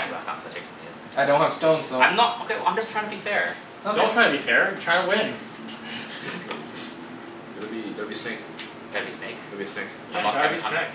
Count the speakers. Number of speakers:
four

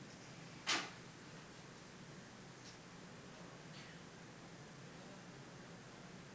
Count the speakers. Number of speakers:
zero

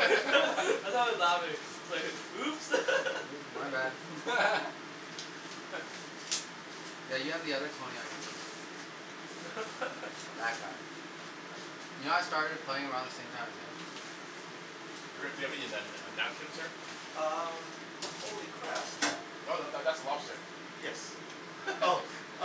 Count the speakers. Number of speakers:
four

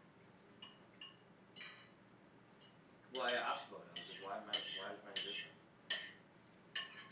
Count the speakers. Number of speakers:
one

